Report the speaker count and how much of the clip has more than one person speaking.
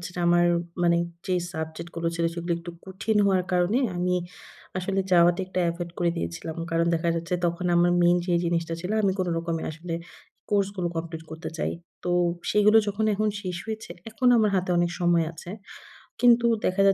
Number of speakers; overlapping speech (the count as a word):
one, no overlap